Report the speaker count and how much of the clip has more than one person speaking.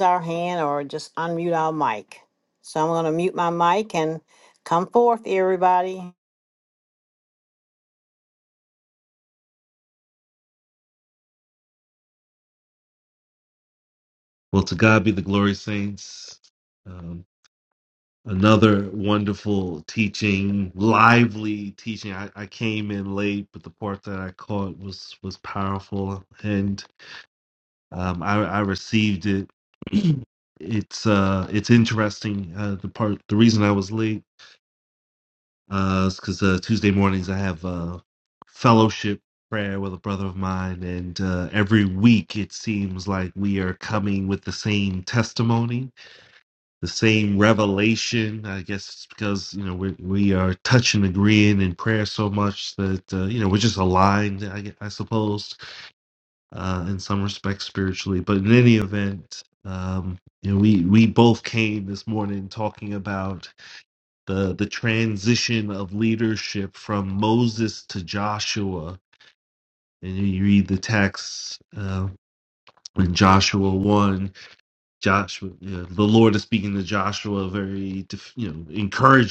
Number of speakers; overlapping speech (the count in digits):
2, no overlap